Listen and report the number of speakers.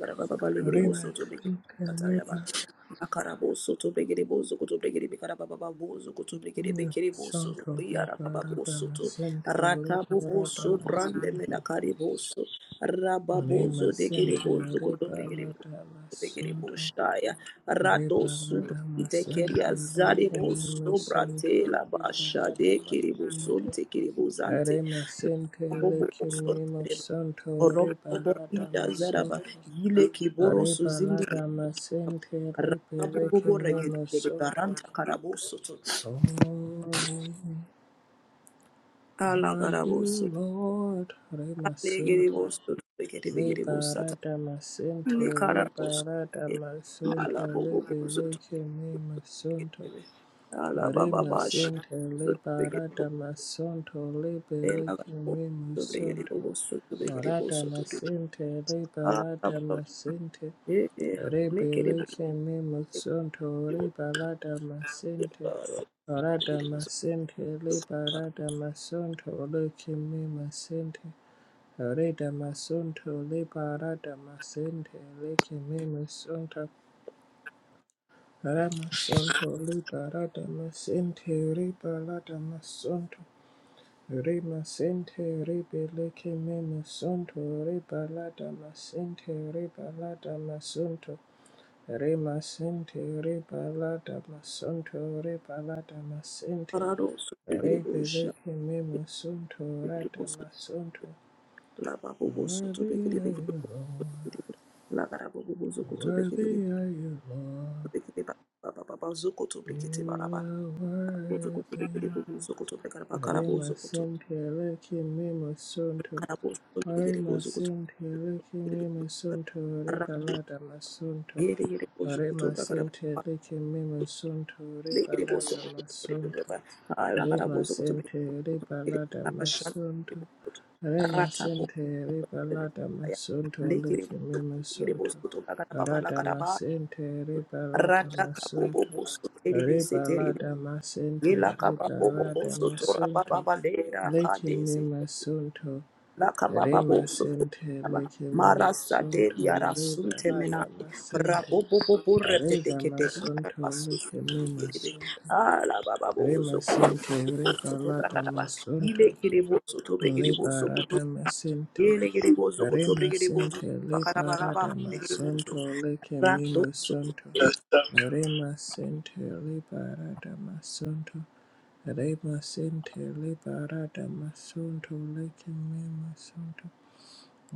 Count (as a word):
two